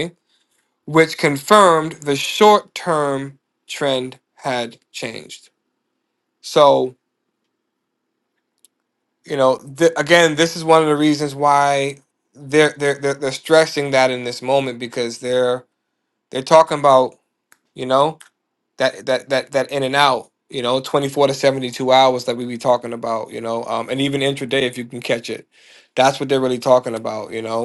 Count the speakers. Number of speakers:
1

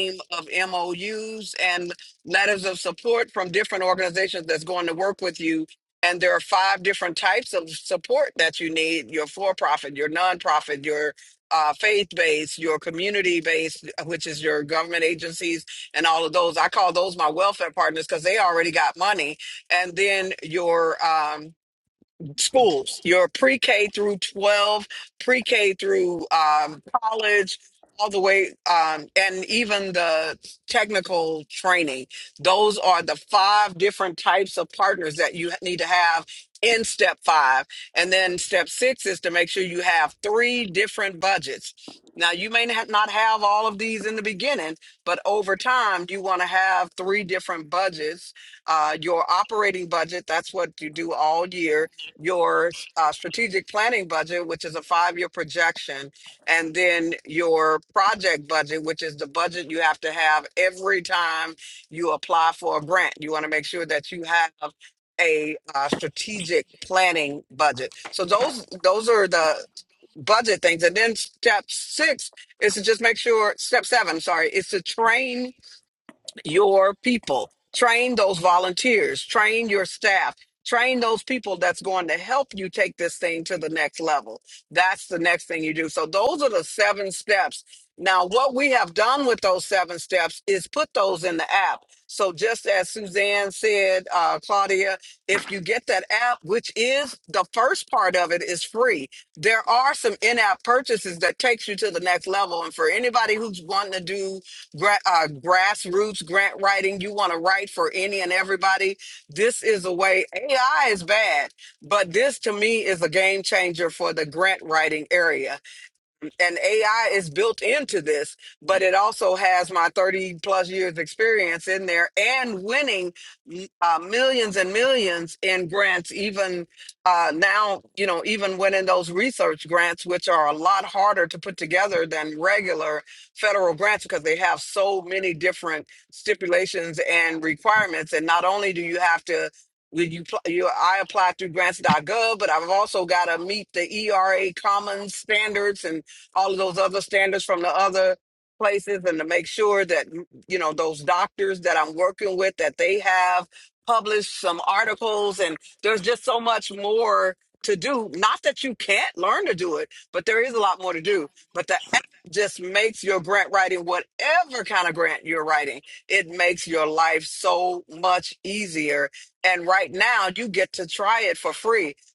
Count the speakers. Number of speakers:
1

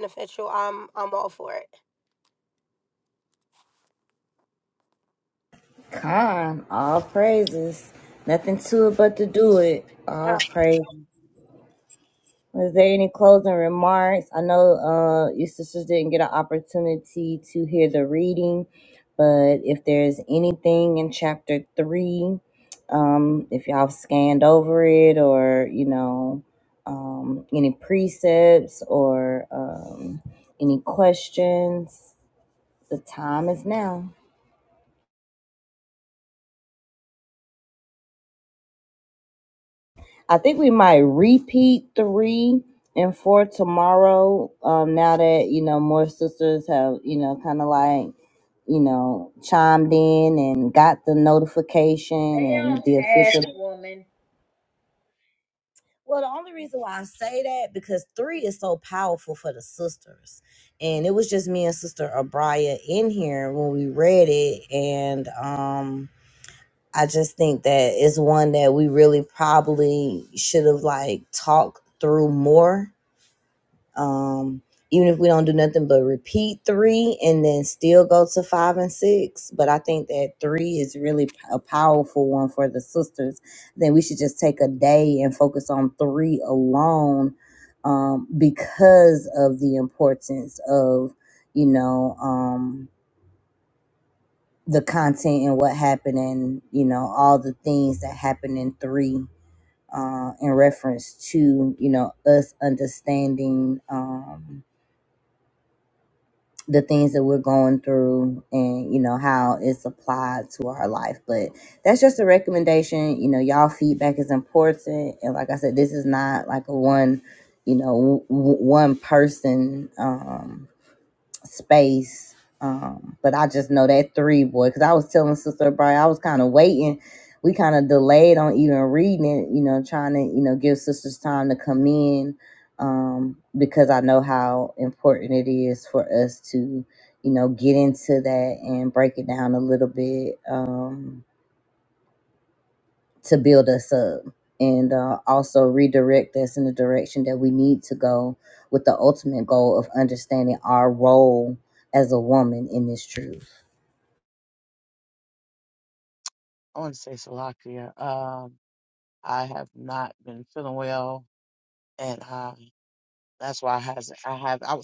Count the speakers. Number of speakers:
4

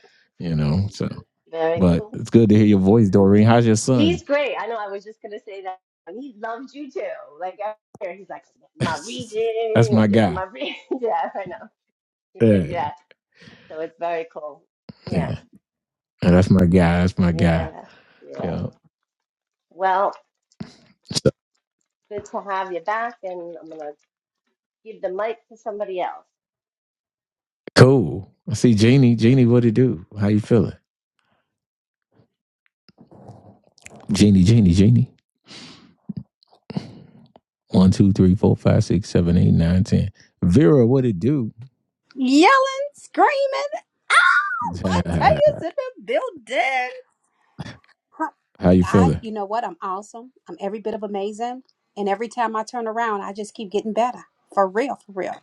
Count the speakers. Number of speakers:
3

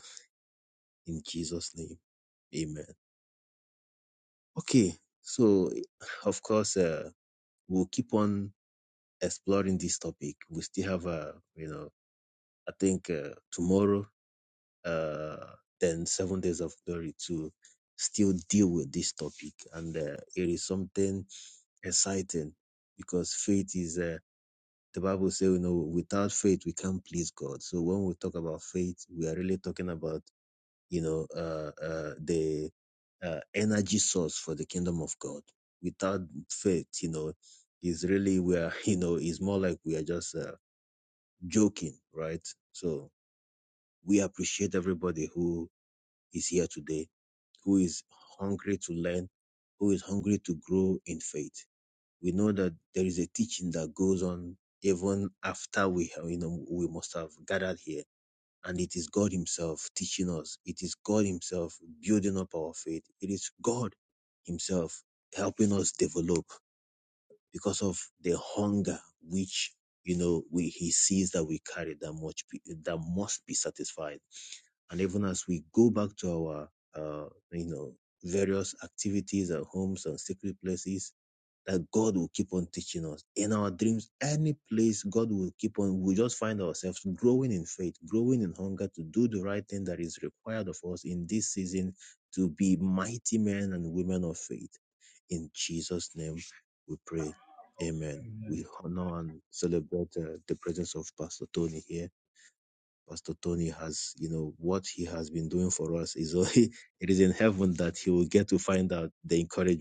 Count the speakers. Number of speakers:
1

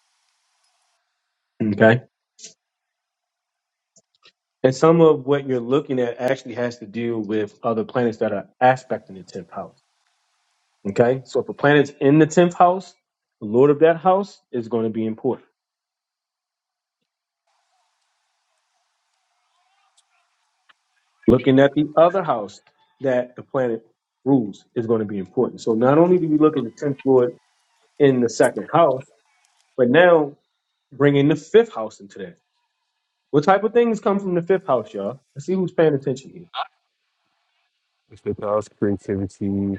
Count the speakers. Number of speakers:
2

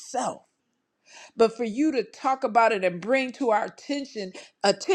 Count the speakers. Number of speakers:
1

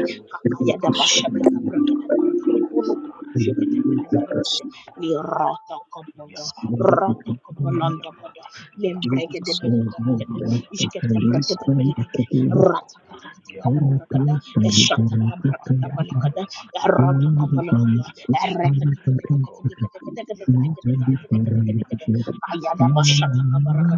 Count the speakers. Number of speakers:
3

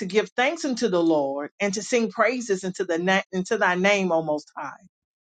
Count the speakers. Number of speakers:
1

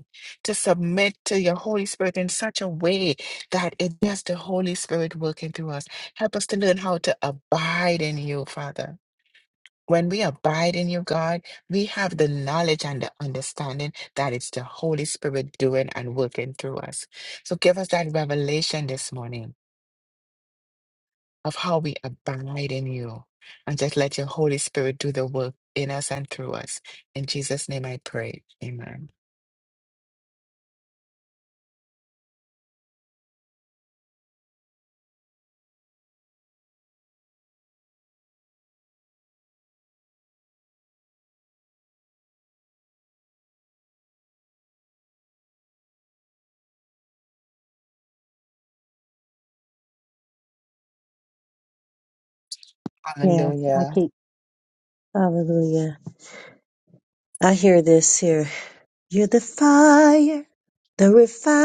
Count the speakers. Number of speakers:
2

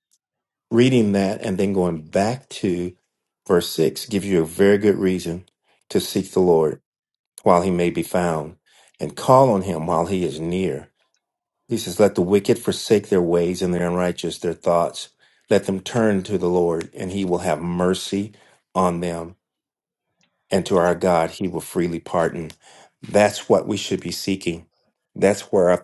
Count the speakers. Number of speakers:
1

